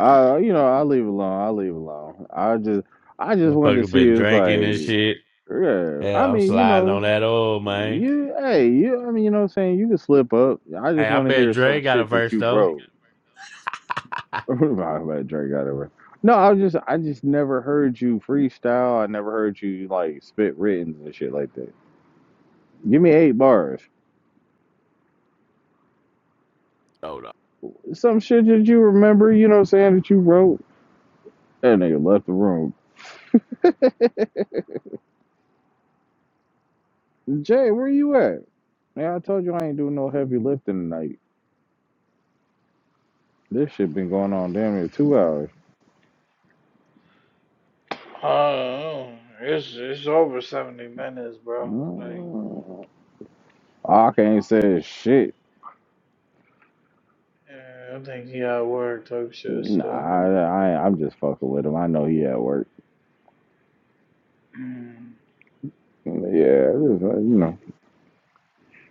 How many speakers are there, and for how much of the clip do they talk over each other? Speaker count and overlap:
three, about 8%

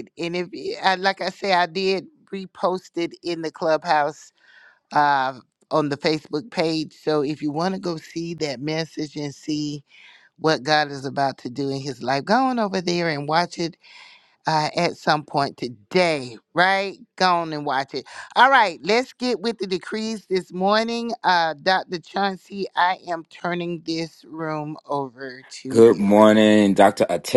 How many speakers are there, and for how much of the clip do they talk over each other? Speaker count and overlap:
two, about 1%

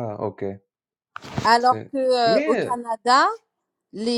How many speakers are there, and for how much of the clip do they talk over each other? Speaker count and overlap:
two, about 19%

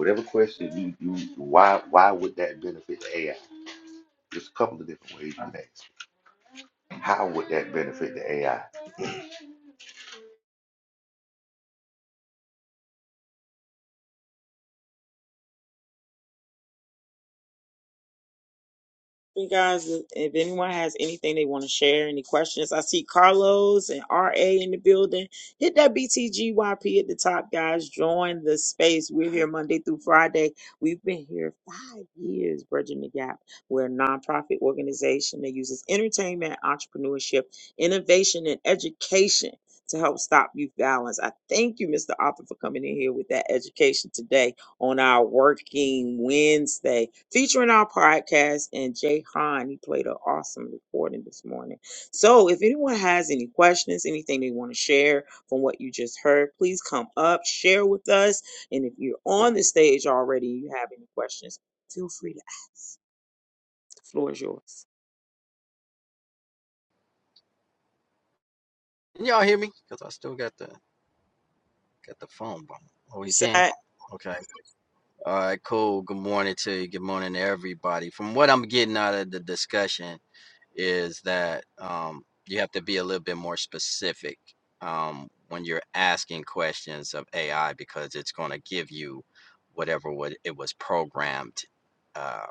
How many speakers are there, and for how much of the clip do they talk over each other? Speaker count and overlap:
three, under 1%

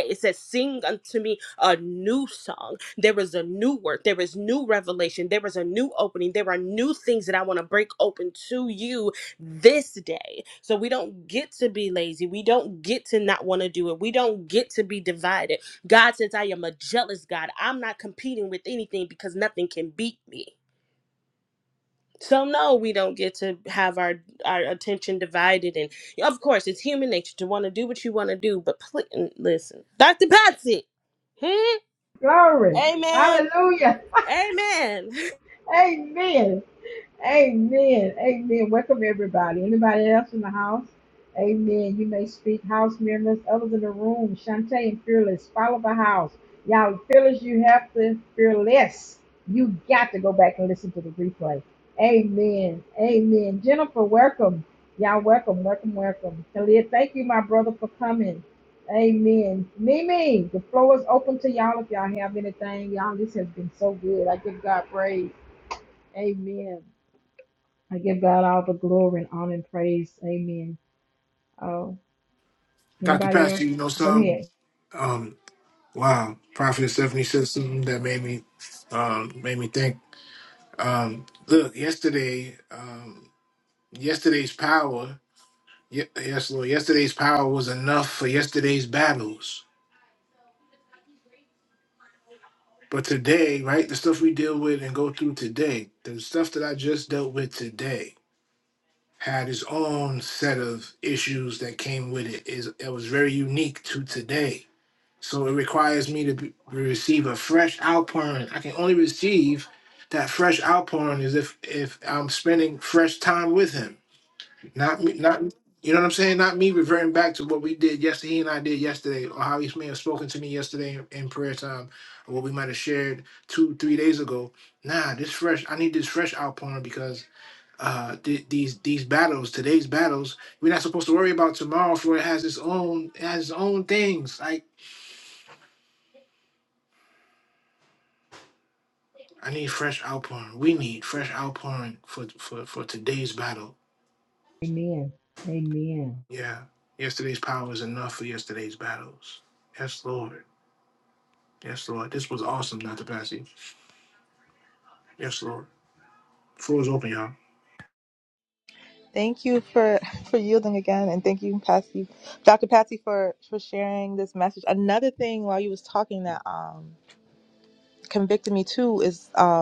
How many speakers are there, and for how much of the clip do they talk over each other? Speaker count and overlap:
four, about 1%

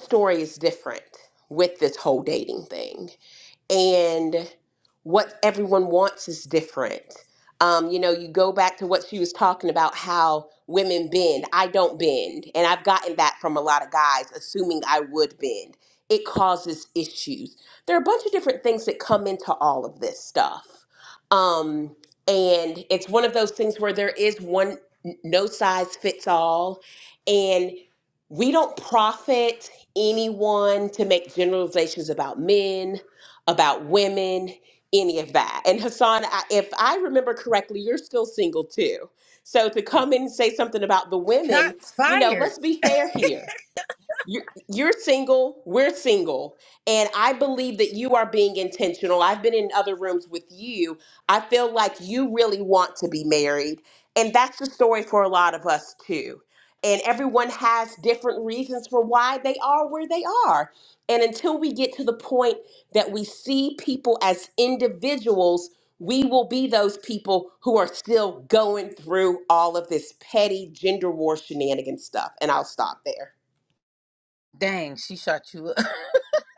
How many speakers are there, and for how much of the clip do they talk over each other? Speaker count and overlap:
two, about 1%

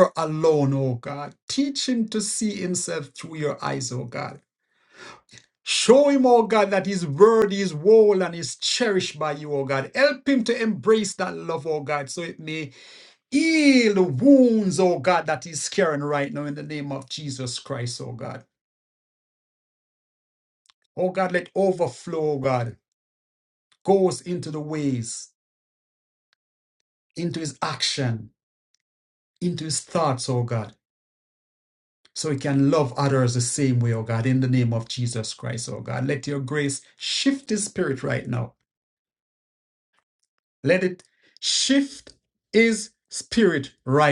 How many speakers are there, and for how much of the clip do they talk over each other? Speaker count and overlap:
one, no overlap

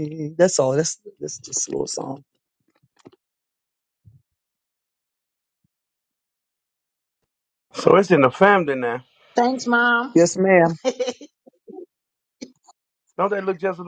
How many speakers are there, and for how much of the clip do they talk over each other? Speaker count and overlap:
three, no overlap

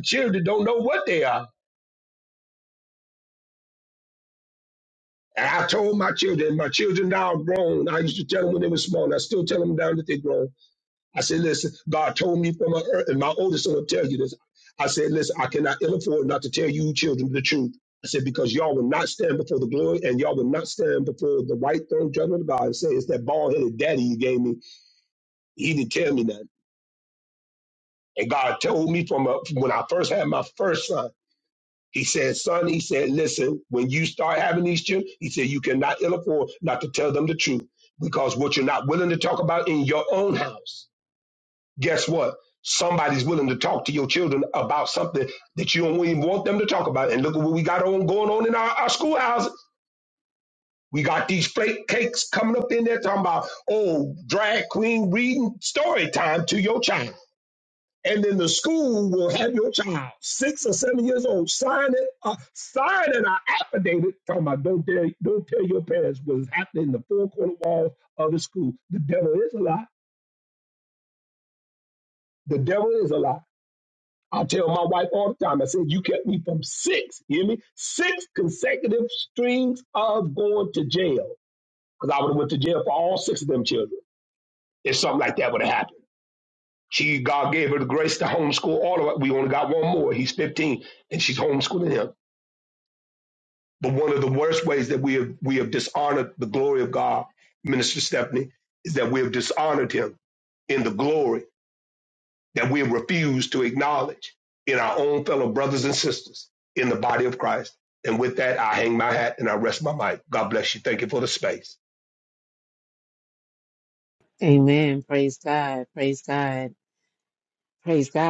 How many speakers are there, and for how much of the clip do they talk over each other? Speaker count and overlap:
two, no overlap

